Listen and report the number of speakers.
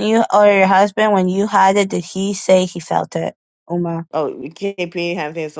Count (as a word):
two